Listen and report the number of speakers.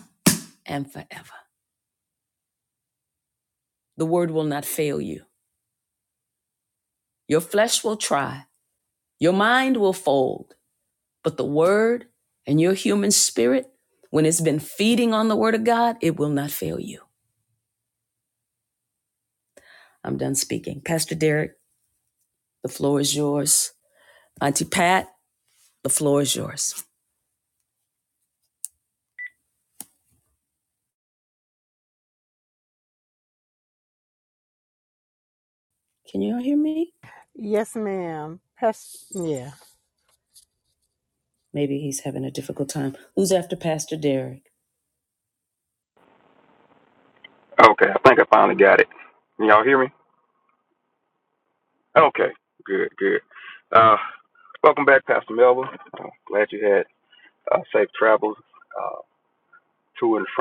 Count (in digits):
3